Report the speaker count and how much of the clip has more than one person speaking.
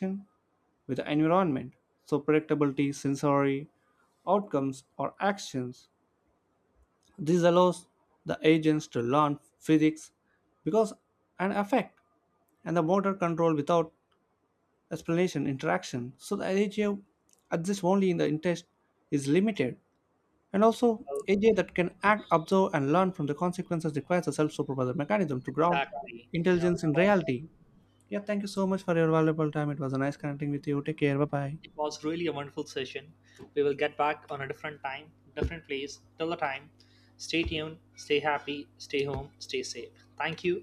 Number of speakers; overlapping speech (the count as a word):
two, about 2%